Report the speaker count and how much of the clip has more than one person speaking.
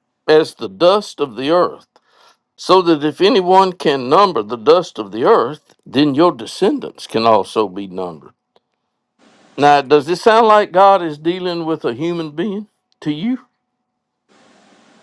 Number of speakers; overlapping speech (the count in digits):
1, no overlap